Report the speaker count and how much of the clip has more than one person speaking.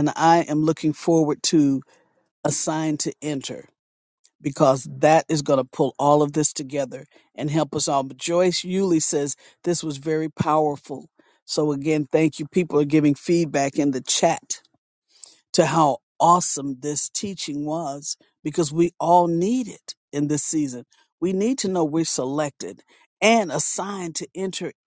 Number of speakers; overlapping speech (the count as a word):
one, no overlap